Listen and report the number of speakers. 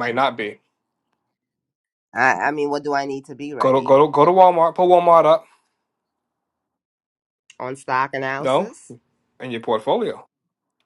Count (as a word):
two